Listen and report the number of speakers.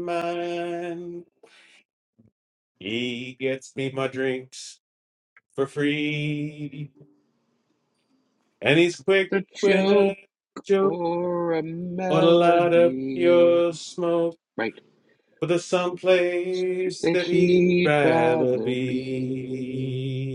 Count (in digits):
2